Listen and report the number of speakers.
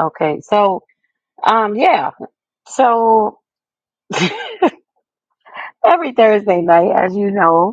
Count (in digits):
1